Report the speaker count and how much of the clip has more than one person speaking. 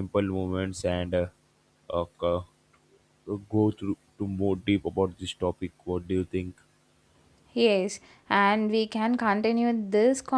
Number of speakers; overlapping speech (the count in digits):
2, no overlap